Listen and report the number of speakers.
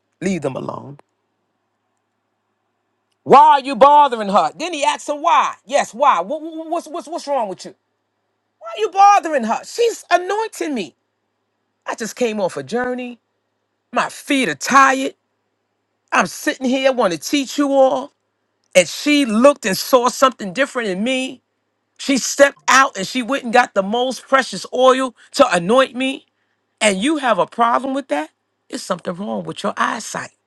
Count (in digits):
1